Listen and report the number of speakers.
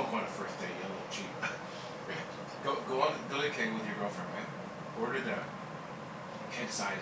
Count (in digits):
1